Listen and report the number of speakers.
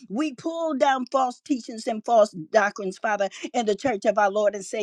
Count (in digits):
1